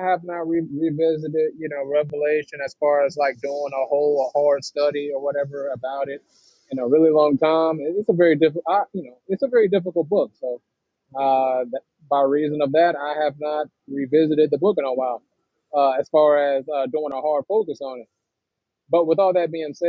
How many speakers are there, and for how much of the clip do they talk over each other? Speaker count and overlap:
1, no overlap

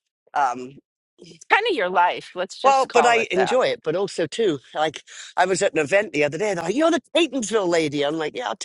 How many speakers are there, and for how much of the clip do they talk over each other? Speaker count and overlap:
2, about 11%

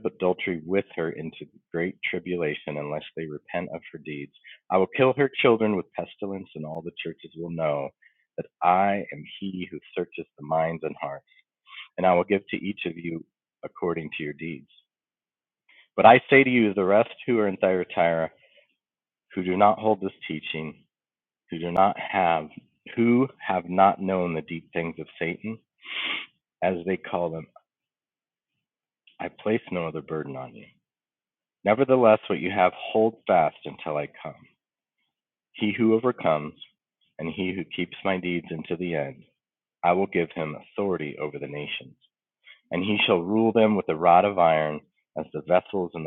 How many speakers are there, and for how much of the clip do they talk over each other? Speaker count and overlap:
1, no overlap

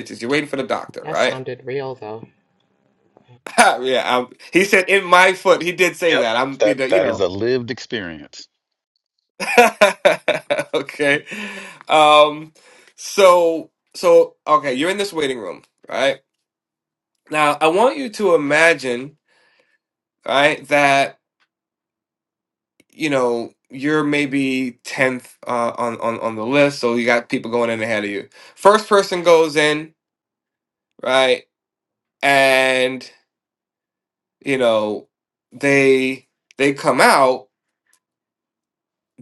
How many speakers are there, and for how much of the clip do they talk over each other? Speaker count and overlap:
3, about 3%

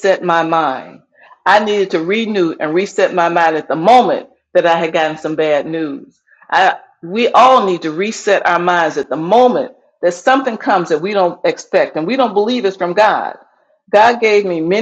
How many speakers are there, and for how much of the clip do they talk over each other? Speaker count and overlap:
1, no overlap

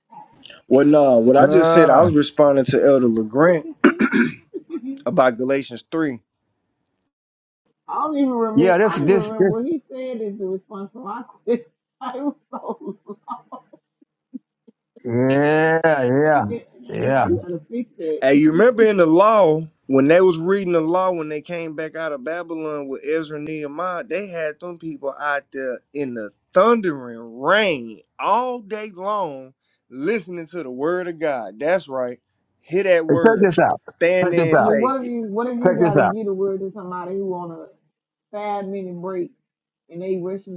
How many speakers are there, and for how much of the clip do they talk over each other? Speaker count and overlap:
3, about 11%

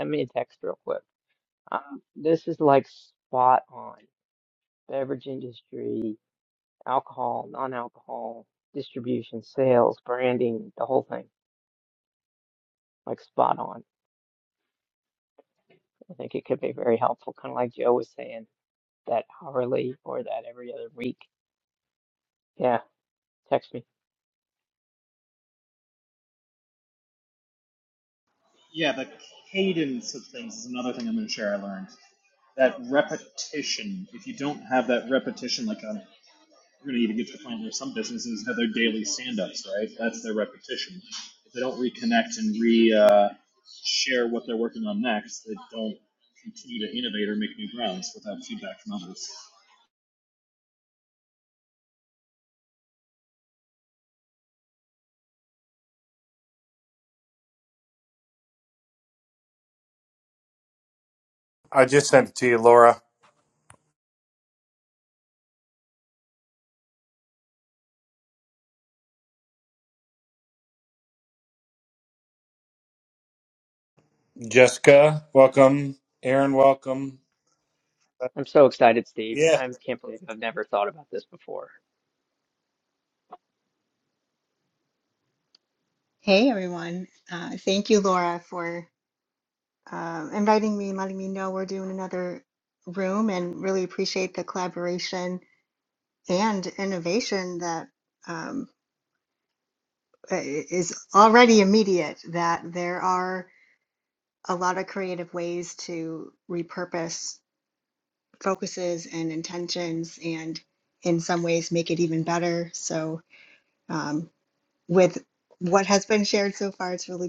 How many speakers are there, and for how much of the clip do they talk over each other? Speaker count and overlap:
4, under 1%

